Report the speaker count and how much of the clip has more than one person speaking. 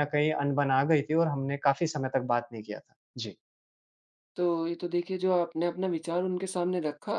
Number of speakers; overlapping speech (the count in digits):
2, no overlap